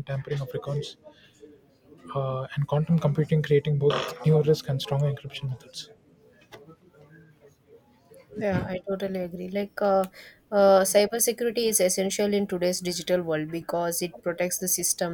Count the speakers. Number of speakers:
2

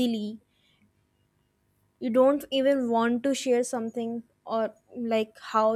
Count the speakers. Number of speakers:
1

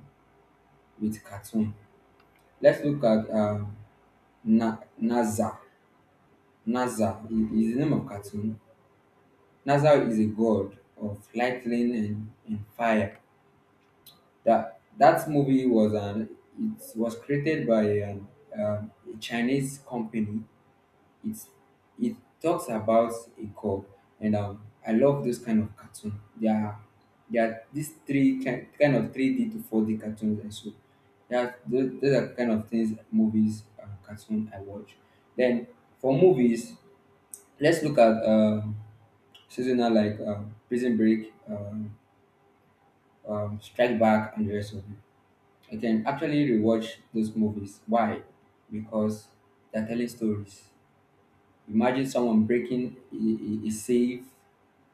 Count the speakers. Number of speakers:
1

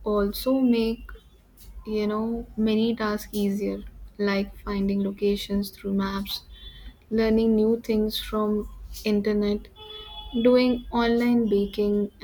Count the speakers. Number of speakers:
1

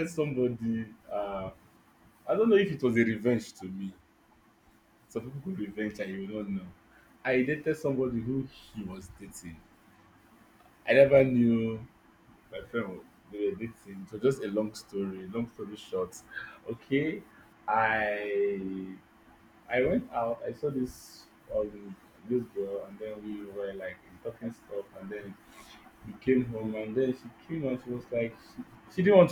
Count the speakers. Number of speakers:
1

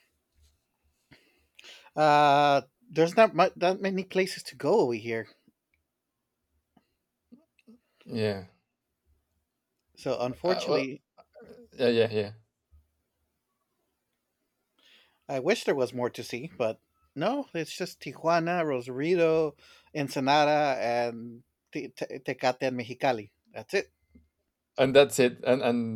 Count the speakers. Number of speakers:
2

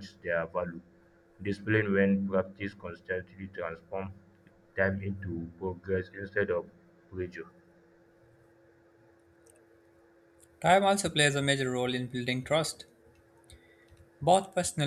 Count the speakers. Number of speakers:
2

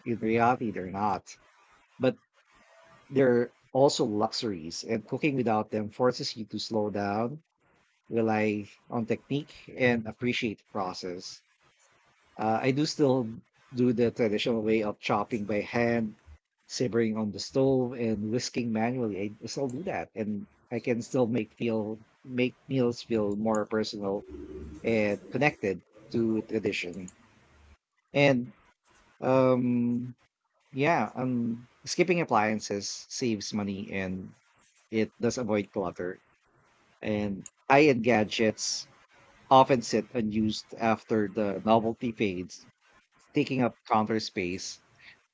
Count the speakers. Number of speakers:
1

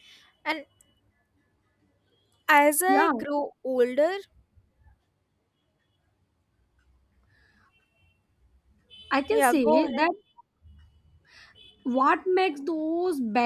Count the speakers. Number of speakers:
2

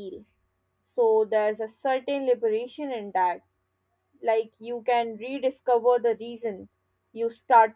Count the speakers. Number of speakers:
1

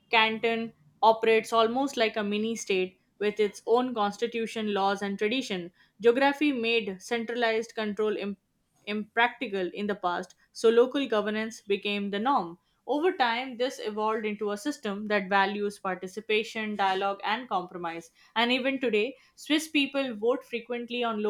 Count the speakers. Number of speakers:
1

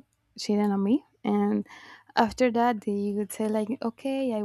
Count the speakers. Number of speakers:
1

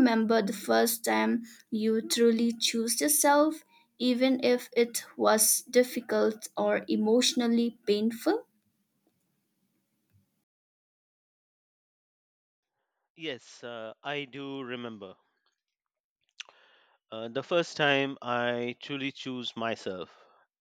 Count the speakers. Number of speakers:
2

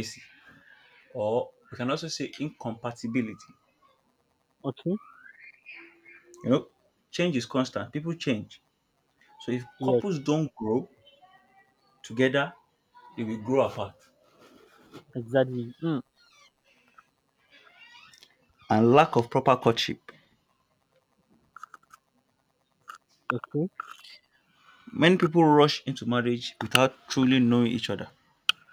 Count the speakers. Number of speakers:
2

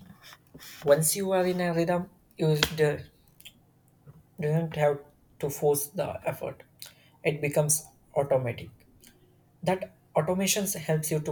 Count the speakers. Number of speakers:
1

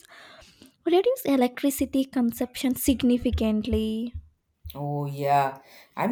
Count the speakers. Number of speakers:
2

